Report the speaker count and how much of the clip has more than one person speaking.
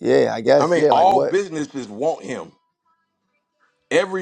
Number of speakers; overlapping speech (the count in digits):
2, about 18%